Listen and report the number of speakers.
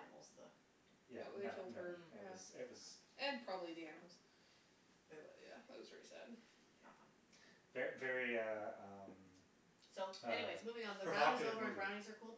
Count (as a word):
three